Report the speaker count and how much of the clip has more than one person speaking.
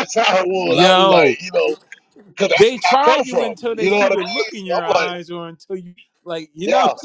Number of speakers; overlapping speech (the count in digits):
2, about 52%